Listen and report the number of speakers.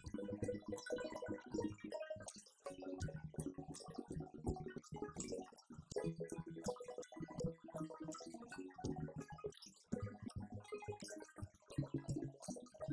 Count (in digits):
0